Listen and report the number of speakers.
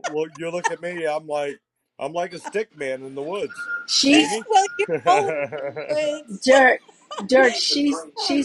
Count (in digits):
3